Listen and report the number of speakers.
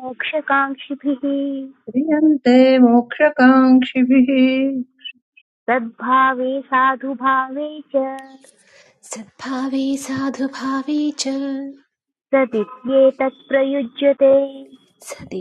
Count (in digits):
3